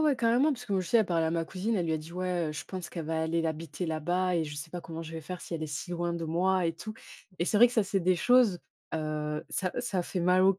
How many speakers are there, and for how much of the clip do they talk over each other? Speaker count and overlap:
one, no overlap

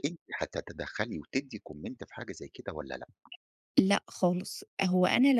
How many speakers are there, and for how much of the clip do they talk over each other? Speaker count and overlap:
two, no overlap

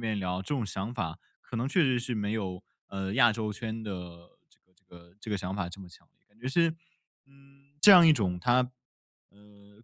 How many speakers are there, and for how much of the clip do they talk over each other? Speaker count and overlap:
one, no overlap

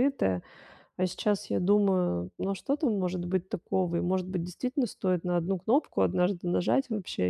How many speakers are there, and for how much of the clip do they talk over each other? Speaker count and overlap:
one, no overlap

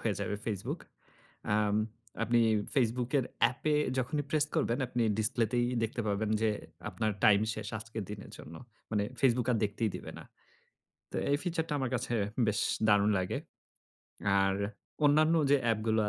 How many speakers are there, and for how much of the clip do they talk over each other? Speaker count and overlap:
one, no overlap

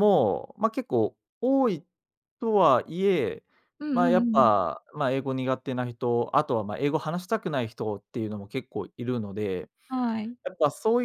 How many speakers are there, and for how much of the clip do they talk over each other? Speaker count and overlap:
two, about 5%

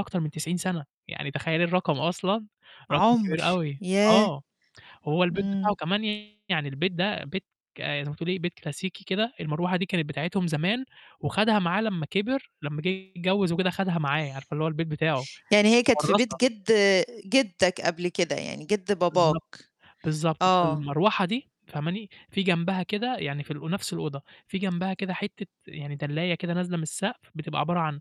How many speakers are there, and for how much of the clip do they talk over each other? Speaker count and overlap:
two, about 9%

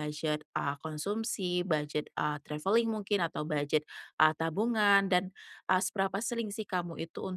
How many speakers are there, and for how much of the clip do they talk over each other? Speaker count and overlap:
one, no overlap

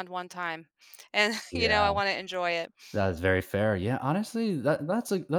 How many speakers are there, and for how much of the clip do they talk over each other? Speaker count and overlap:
two, about 5%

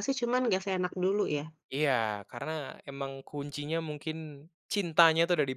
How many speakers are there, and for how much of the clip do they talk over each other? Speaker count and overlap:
two, no overlap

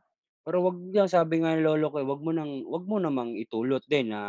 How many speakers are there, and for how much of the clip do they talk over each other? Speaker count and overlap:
one, no overlap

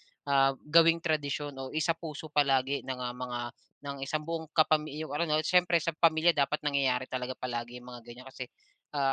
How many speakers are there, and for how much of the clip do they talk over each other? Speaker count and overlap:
one, no overlap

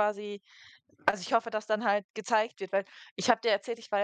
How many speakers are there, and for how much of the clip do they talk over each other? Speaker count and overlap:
one, no overlap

